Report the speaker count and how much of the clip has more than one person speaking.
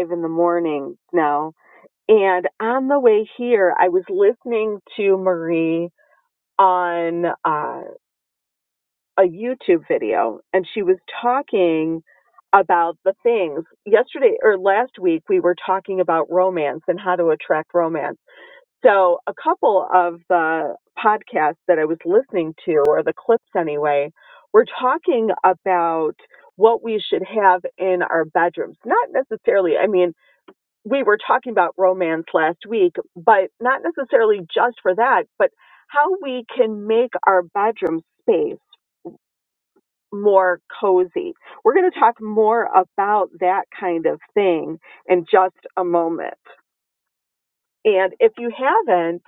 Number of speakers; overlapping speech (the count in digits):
1, no overlap